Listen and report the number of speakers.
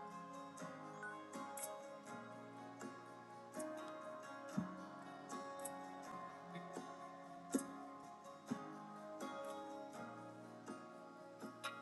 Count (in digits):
0